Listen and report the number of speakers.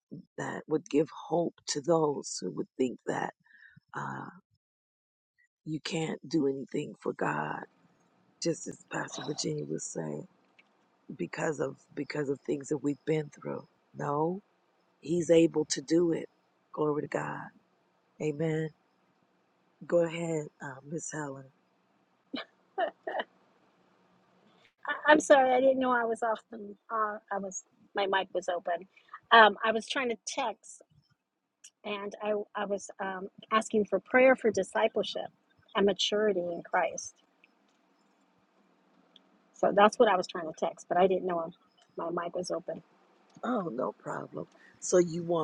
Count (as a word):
two